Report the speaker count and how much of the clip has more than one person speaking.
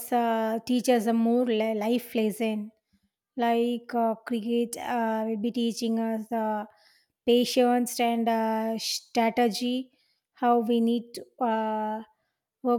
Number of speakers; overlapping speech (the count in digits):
1, no overlap